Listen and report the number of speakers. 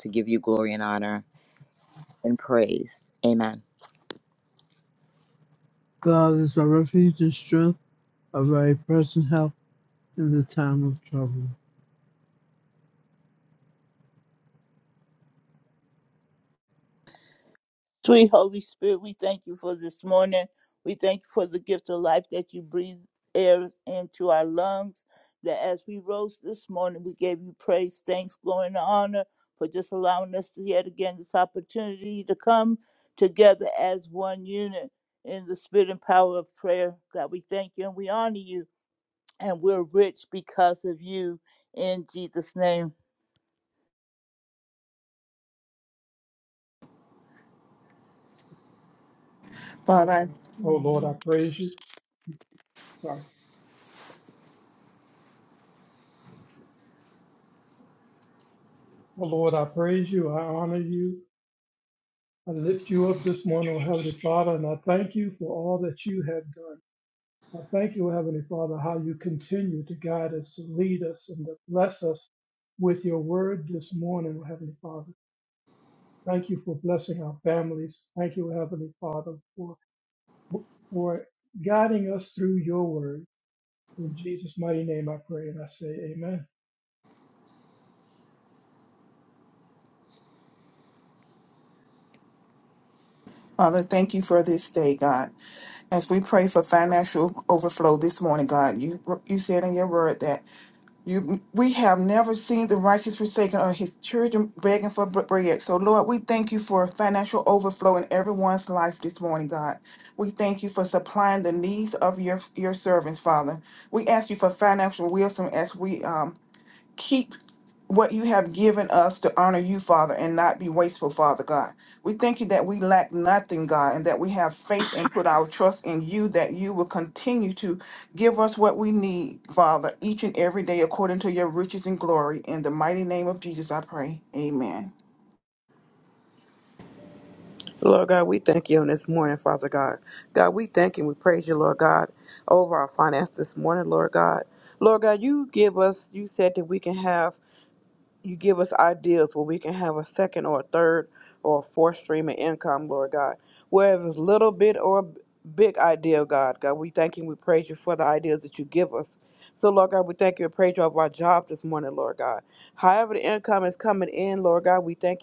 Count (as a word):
six